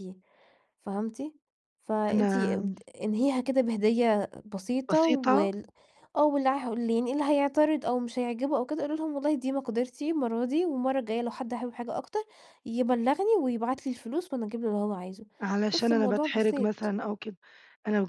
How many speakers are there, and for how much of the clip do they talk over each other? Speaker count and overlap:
2, about 12%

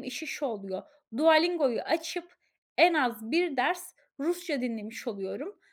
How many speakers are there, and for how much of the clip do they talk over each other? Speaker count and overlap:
1, no overlap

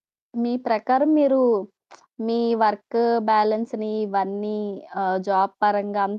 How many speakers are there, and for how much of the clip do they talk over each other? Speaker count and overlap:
1, no overlap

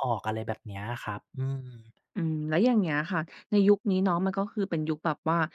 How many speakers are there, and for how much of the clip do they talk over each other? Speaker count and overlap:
2, no overlap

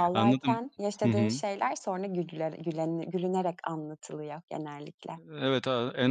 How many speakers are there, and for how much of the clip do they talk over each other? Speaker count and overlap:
2, about 13%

